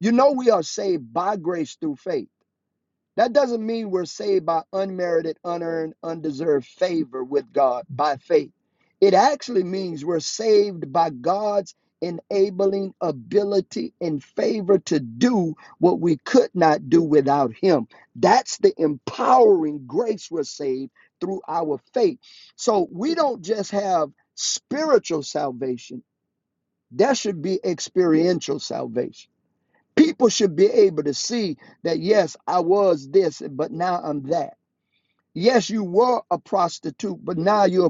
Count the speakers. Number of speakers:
1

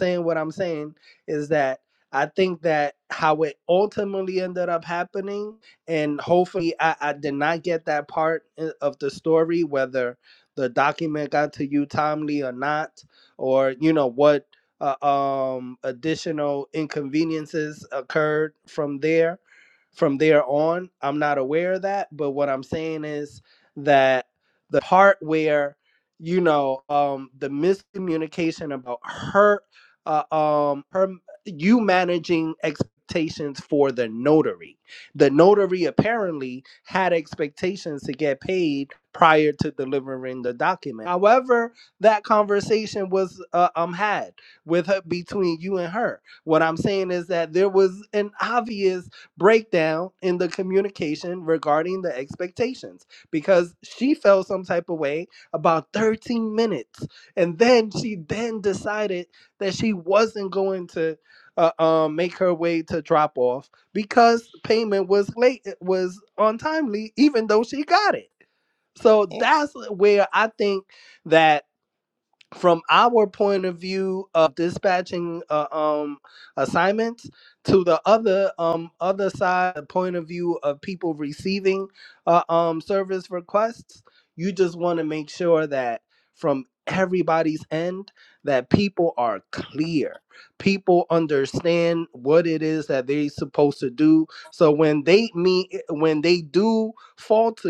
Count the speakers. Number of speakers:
1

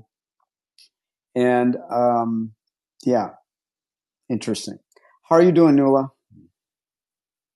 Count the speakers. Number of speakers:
1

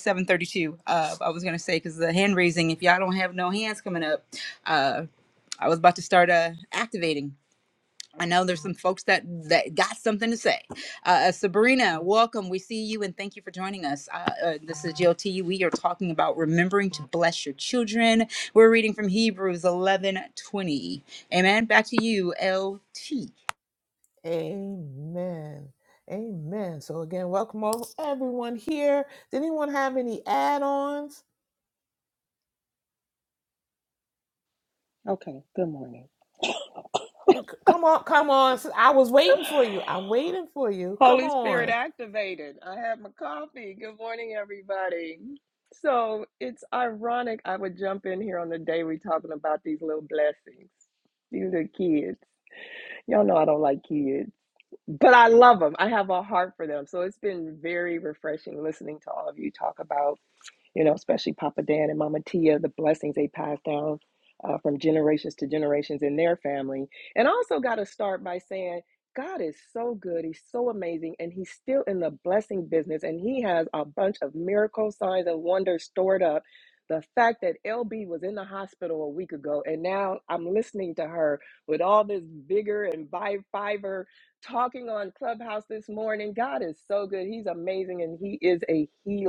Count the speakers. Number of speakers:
3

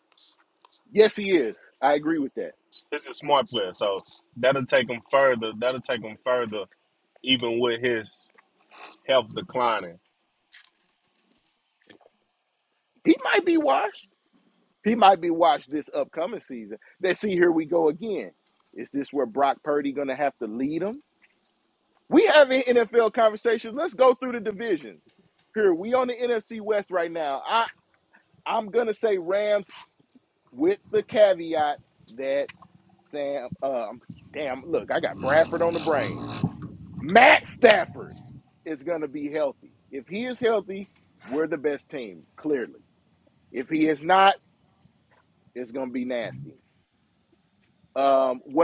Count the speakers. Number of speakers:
2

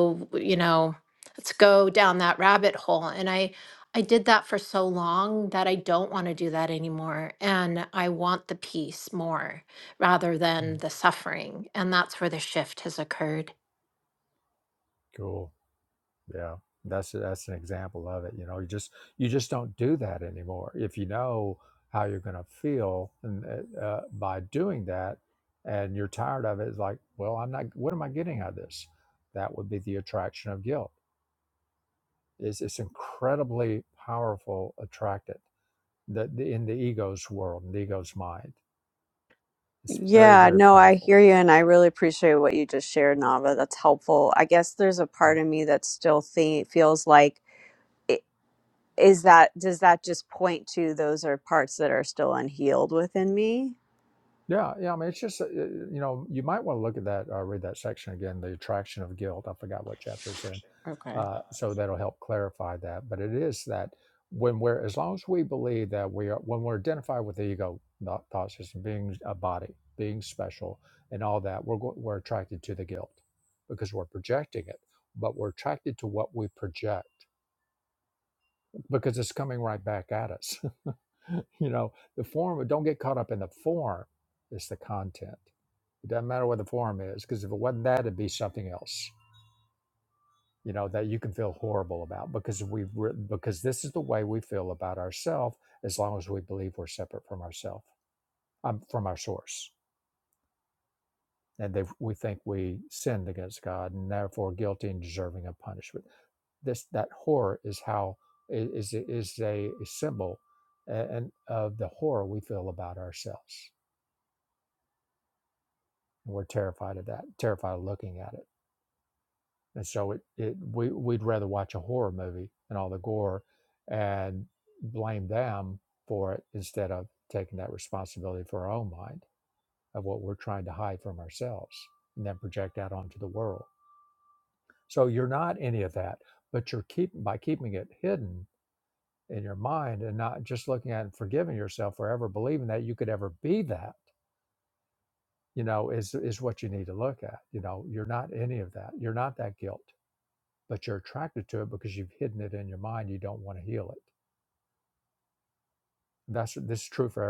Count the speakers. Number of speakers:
3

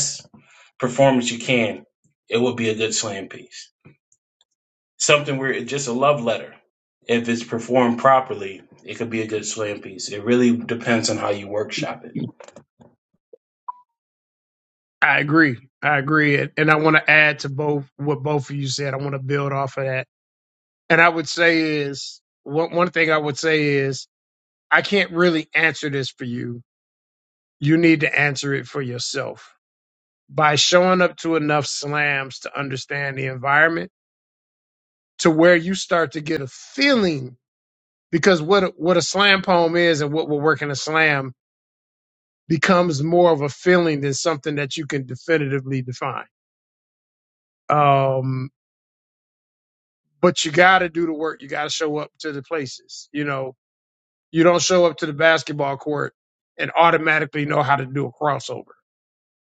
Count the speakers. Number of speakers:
2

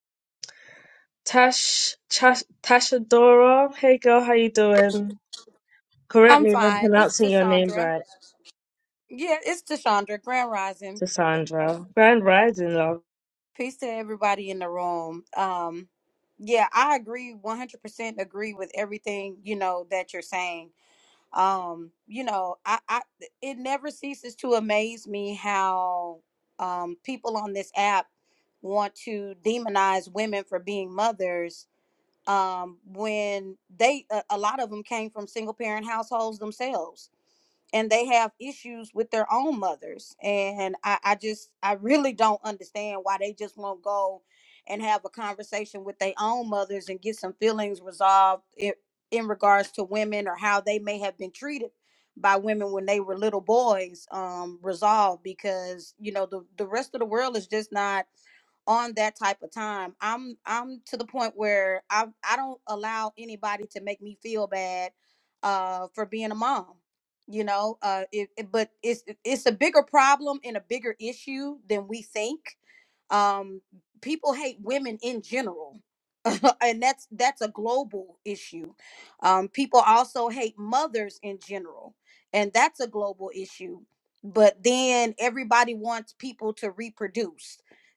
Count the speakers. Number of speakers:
2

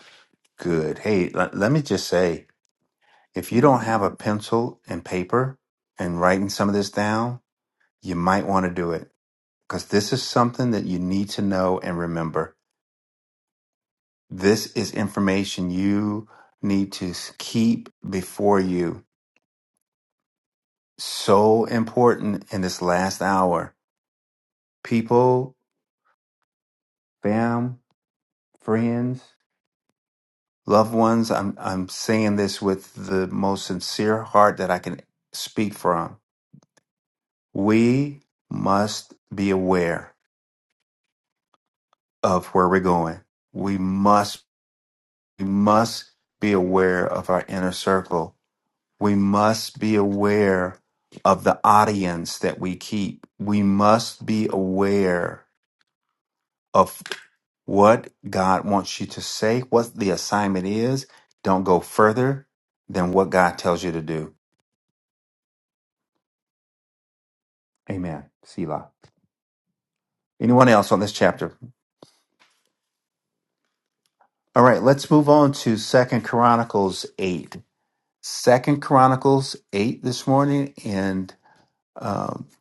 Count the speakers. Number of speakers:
1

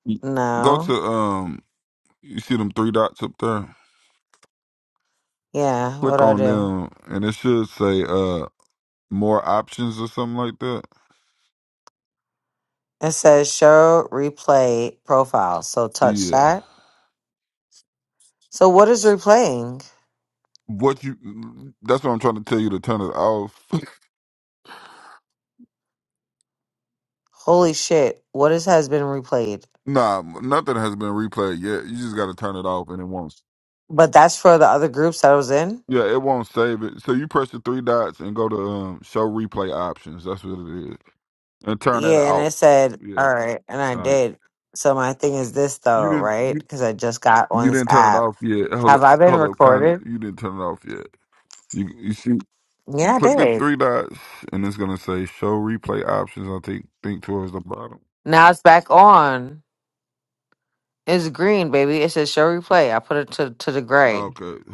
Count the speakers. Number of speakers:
2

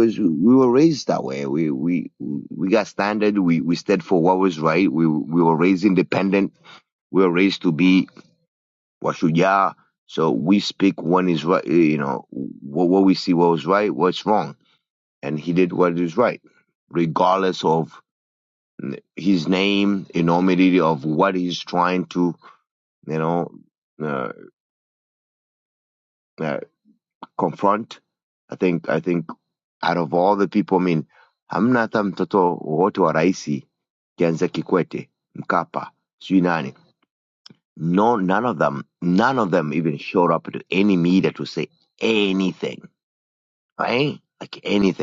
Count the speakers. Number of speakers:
1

